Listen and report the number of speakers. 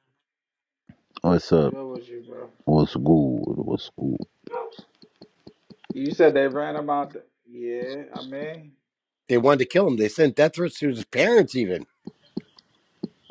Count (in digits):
3